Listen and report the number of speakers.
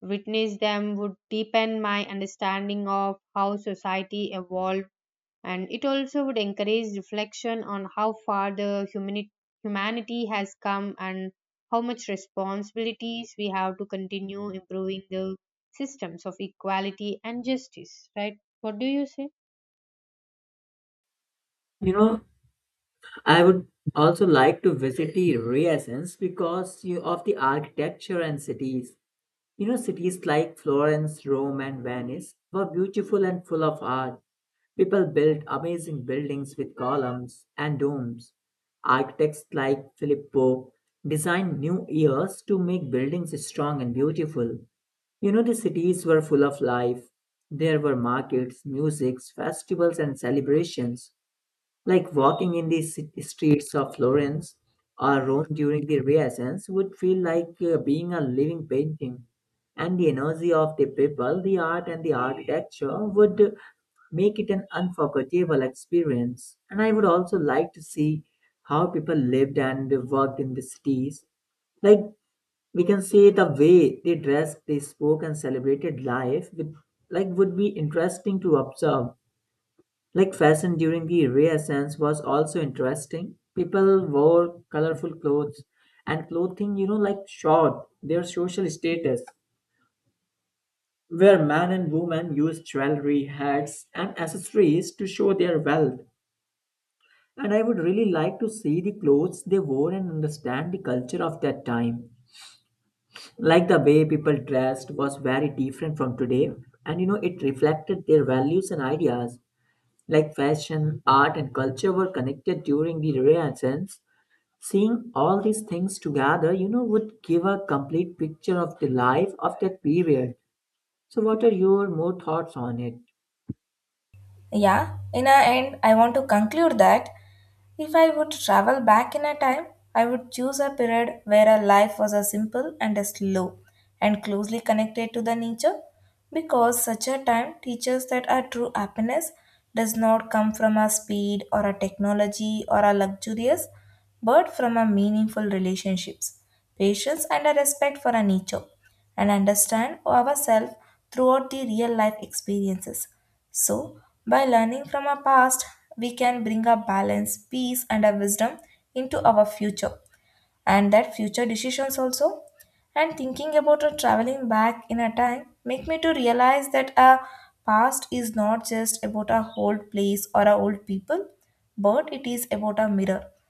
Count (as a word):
three